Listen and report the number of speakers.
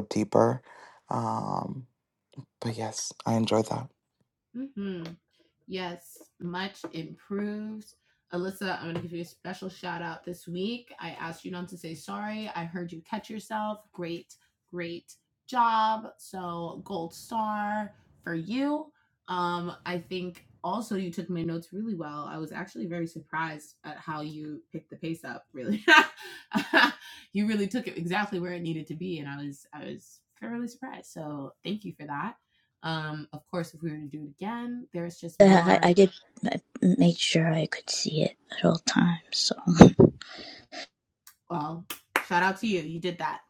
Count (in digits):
3